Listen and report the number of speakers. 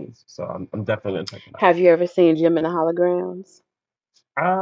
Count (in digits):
2